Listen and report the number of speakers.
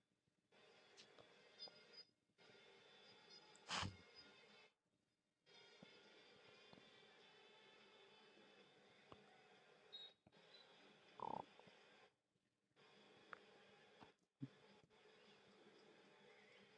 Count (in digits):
0